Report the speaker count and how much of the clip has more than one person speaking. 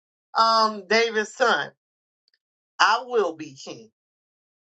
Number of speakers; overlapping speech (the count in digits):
1, no overlap